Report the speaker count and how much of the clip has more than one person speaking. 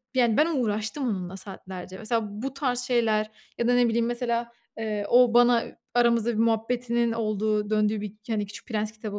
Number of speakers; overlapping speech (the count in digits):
1, no overlap